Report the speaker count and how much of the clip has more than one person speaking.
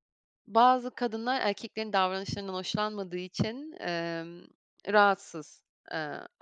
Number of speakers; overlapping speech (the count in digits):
1, no overlap